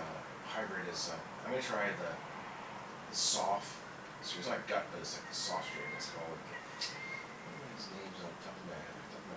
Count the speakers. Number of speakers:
1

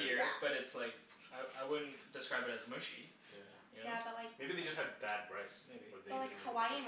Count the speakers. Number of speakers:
3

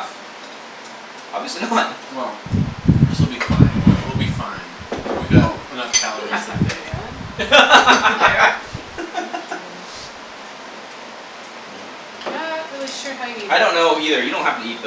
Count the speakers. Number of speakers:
3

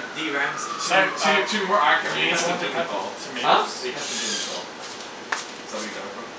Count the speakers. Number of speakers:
3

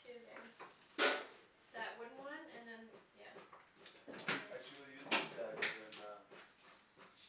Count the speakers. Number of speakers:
2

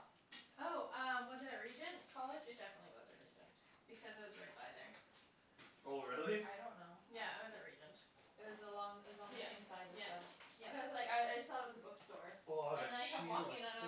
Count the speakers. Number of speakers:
3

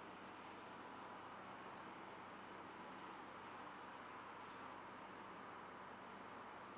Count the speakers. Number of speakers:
0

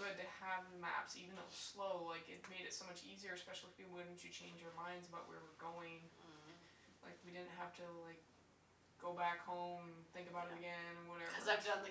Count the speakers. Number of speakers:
2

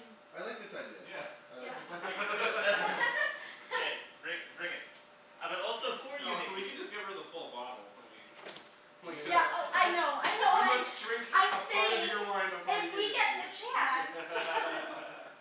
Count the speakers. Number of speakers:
4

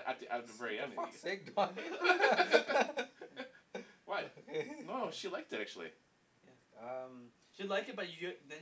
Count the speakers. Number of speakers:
3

